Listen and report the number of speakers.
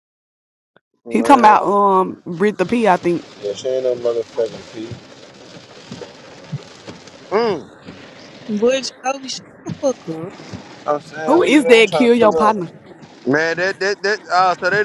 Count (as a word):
four